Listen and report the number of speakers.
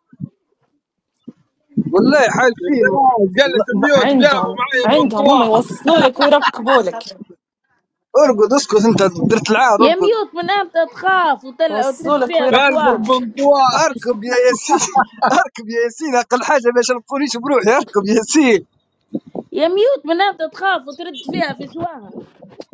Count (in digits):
4